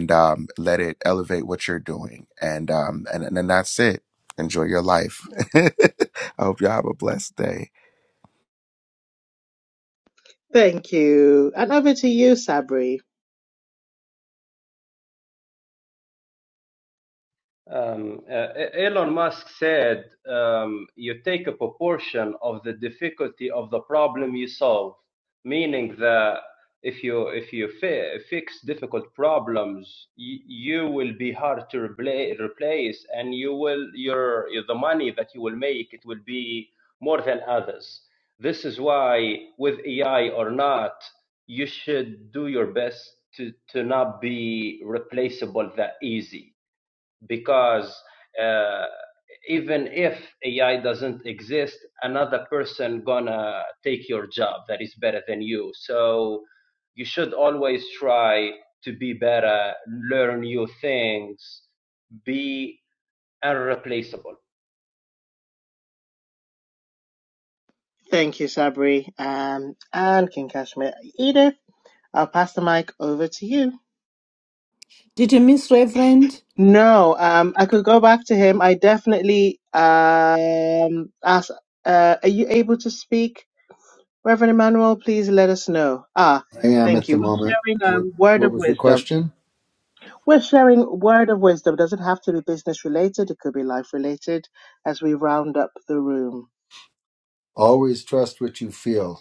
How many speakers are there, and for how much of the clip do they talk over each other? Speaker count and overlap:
five, about 2%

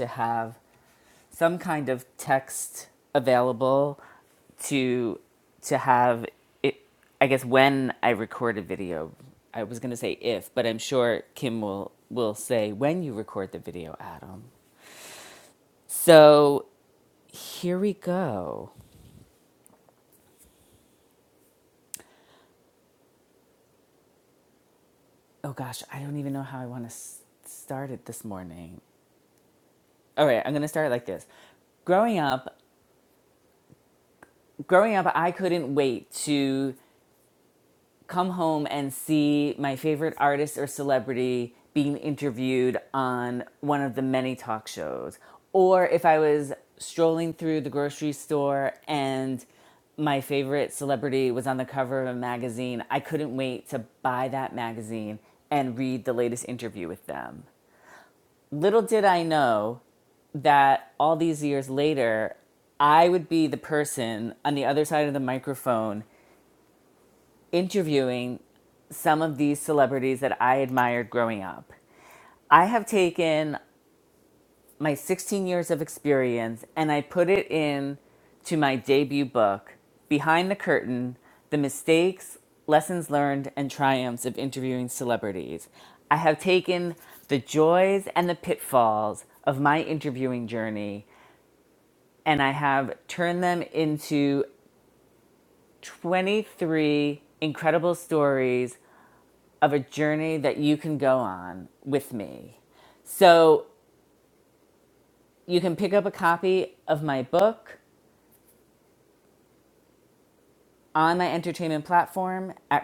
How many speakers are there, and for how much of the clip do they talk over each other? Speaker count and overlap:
one, no overlap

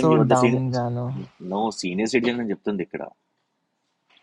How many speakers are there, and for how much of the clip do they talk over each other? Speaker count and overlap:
two, about 17%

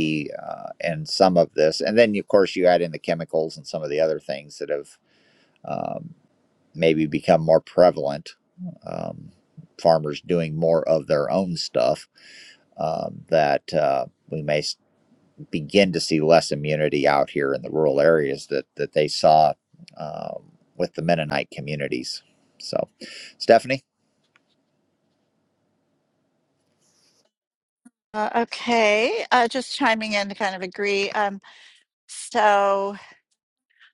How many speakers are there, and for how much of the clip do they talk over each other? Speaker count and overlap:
two, no overlap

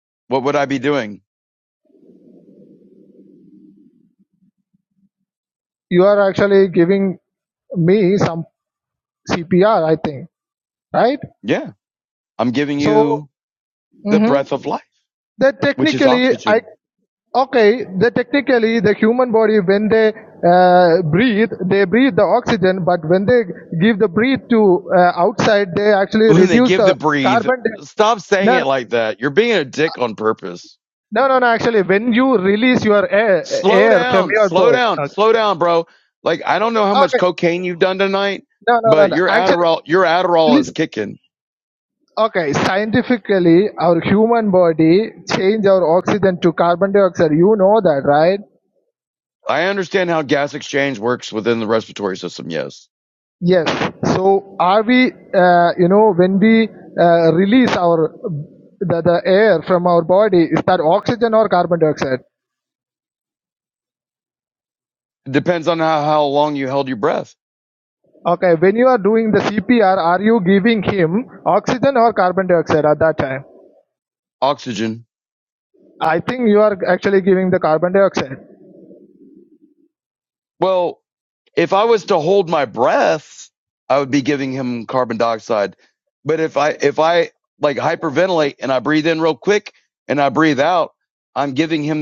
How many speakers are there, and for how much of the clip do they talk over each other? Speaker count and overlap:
two, about 7%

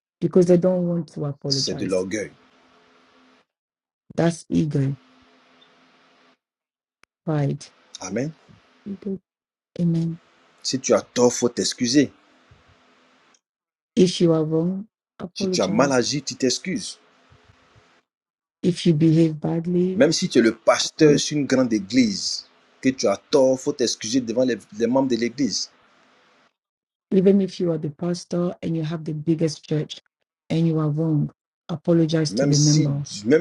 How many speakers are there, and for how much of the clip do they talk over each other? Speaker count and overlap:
two, about 6%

